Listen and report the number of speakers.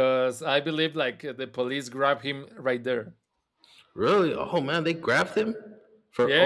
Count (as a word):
two